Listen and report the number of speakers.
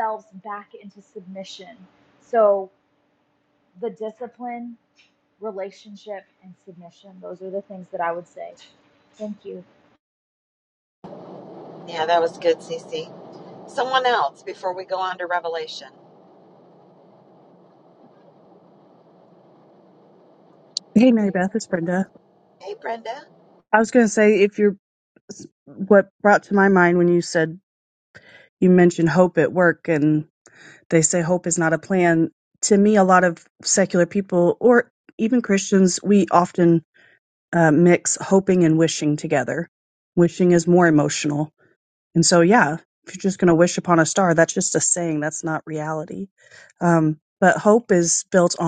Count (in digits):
3